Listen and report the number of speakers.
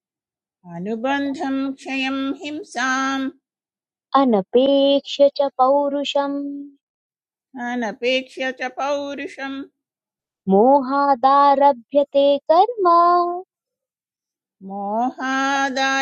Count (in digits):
2